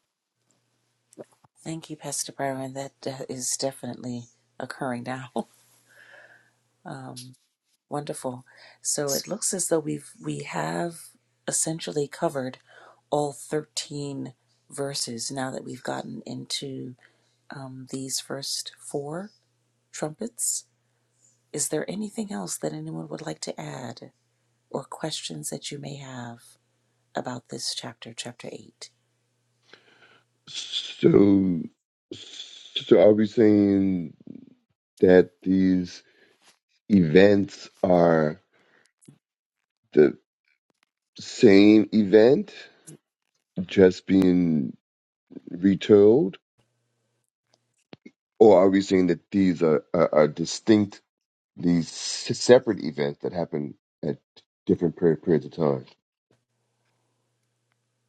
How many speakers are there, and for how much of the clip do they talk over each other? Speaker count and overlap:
two, no overlap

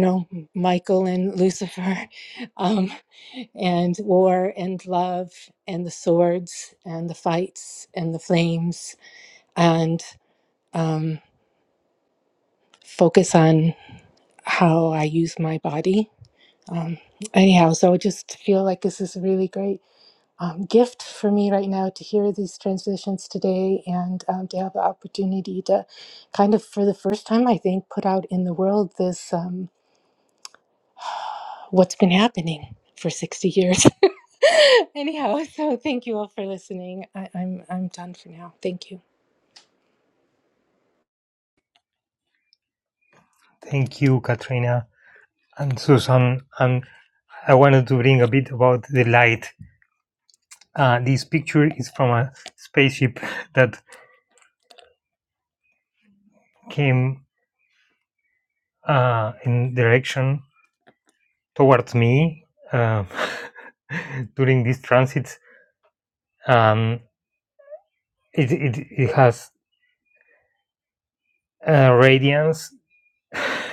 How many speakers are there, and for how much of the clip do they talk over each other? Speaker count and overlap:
two, no overlap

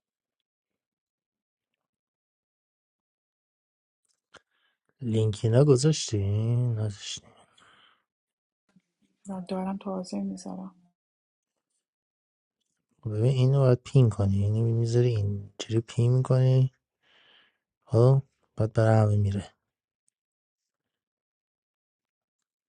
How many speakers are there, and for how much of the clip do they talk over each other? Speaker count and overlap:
two, no overlap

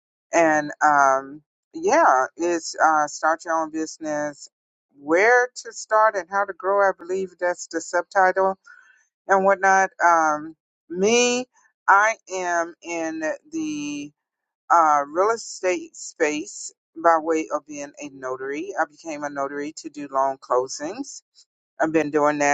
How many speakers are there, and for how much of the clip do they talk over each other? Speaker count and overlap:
one, no overlap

